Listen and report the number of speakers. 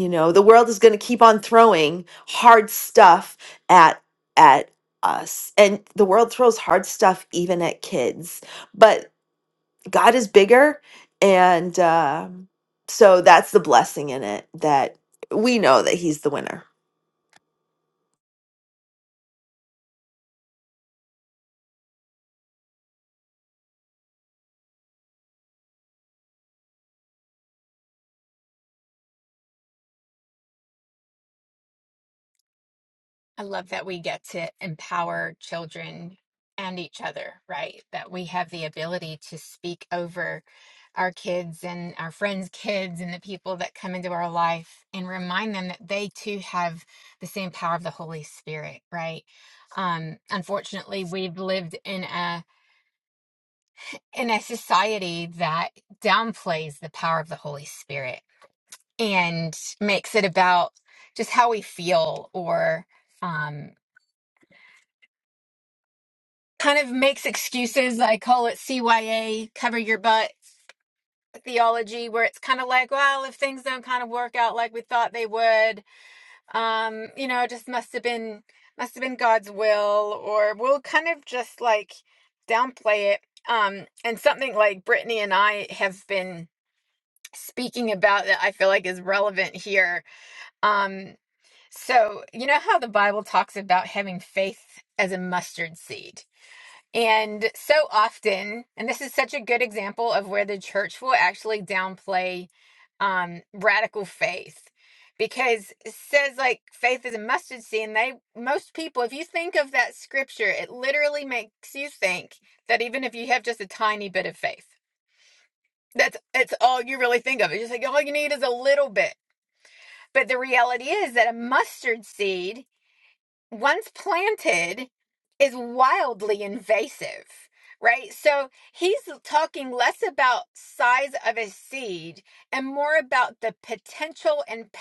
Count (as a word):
two